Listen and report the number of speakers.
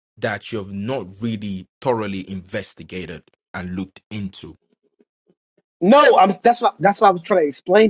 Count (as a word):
two